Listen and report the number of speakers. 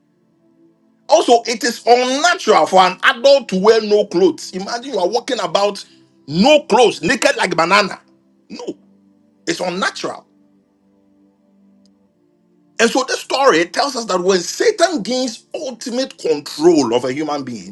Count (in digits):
1